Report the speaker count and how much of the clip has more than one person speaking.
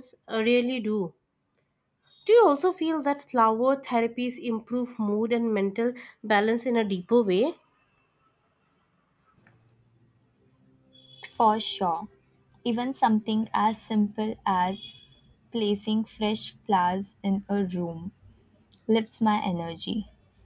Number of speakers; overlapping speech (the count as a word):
two, no overlap